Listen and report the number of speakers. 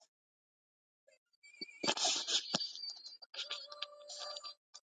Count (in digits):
0